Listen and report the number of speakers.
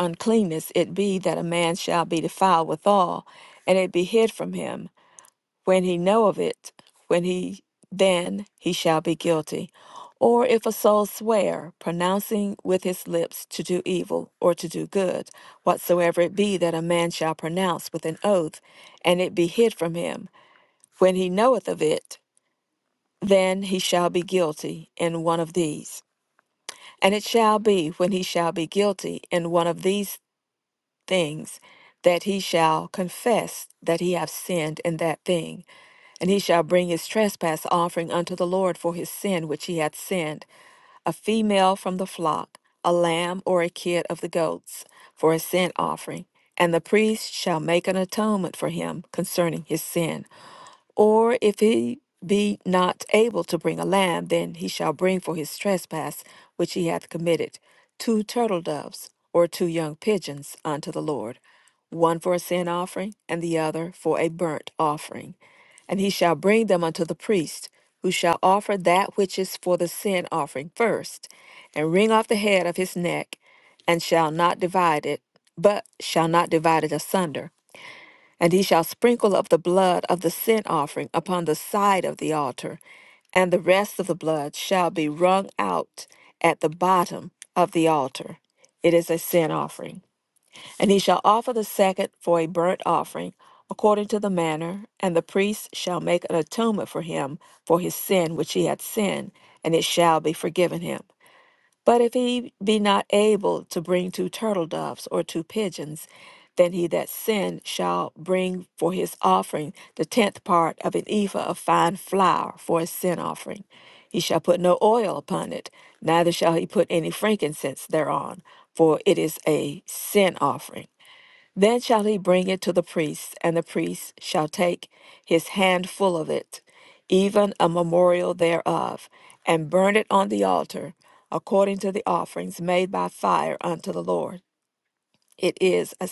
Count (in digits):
1